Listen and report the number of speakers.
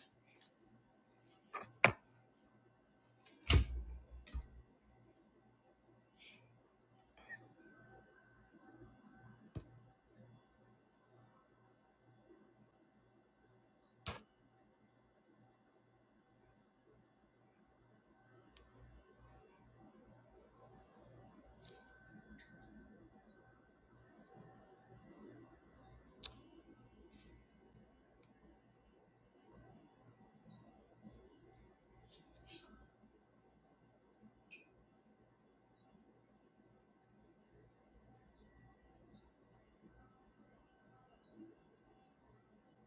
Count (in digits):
0